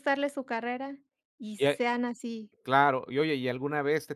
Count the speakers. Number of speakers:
two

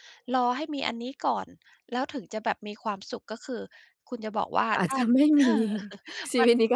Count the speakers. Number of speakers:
two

